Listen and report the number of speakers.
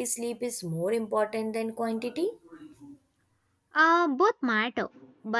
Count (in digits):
2